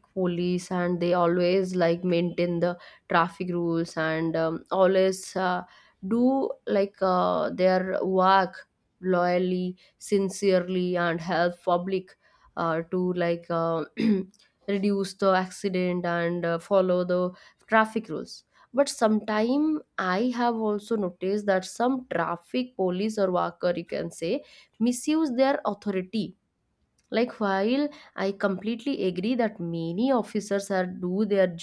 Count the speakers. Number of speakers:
1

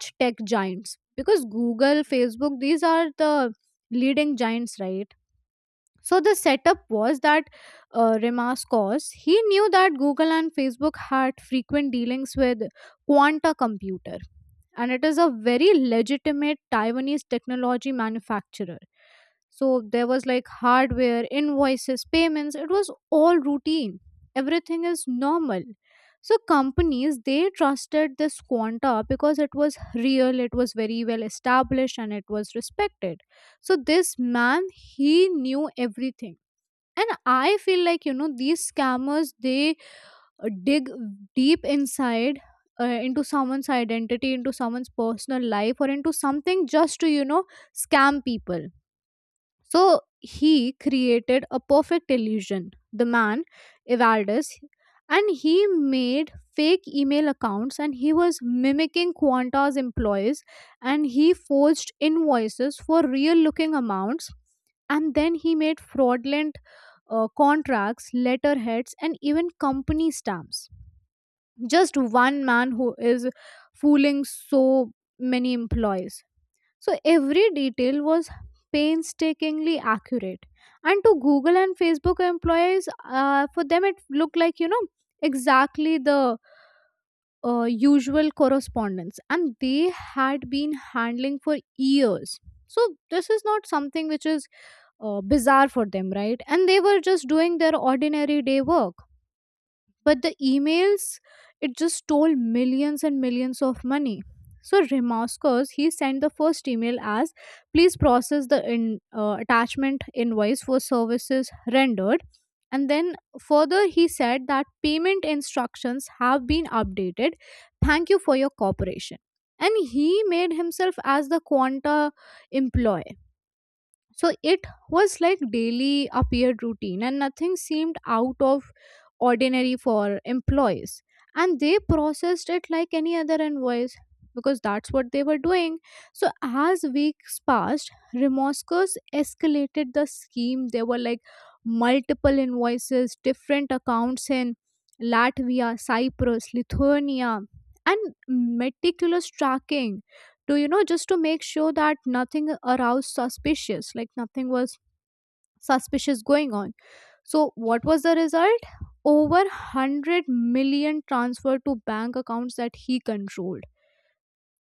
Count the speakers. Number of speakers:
1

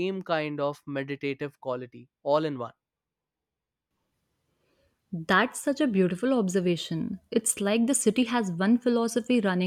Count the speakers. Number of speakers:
2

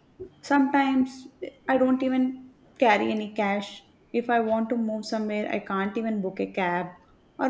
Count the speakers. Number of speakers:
1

